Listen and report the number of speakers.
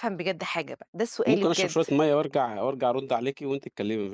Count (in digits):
2